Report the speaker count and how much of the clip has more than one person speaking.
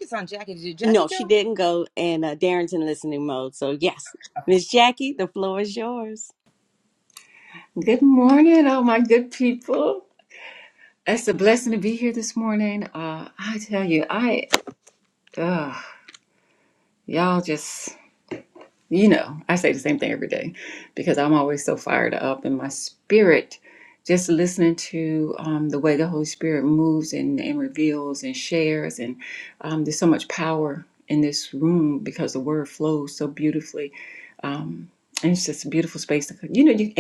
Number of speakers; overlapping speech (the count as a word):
three, about 1%